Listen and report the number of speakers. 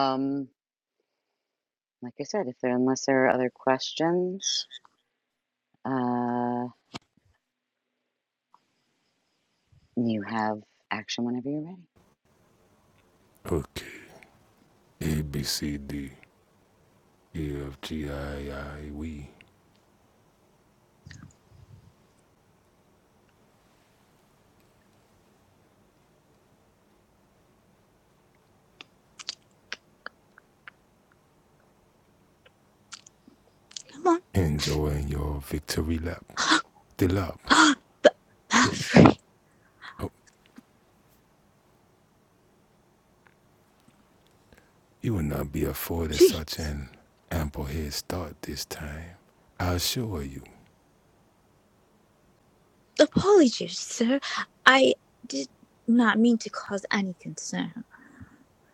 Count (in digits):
3